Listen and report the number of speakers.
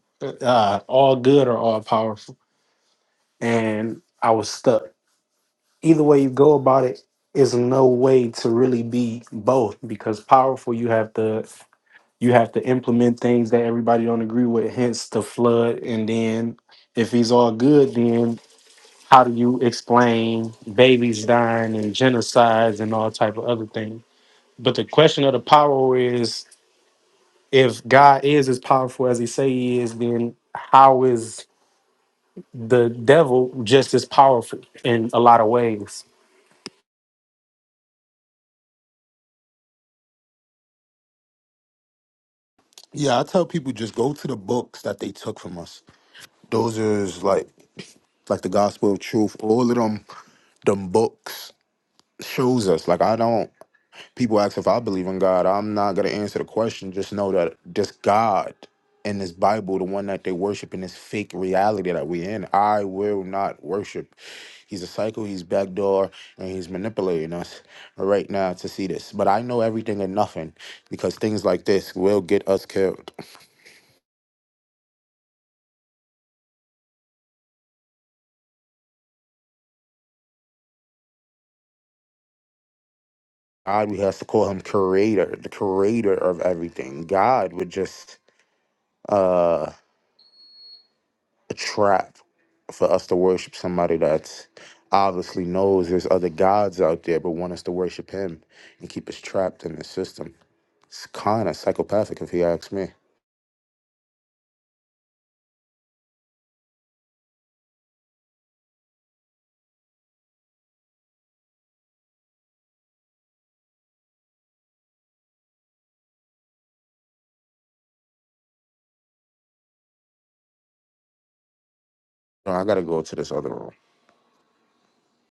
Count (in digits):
2